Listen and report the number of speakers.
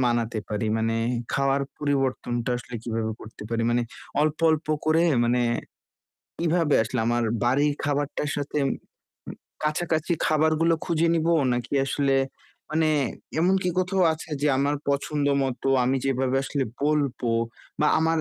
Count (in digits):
1